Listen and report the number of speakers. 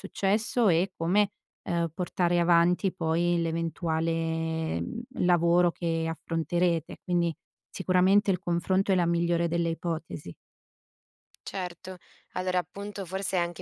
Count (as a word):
two